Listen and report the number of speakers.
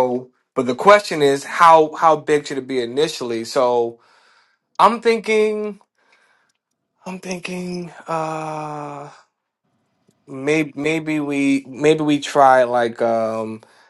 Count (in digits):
1